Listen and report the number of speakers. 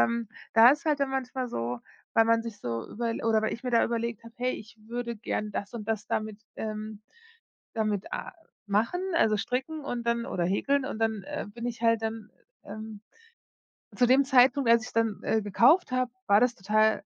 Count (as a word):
one